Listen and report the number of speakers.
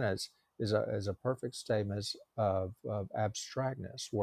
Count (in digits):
1